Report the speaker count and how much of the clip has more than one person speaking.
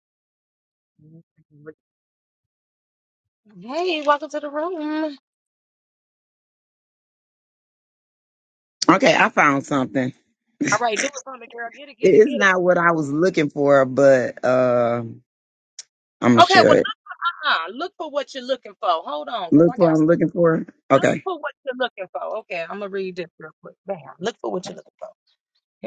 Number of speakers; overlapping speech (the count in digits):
2, about 5%